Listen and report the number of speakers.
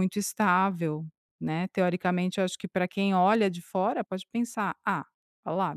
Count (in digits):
1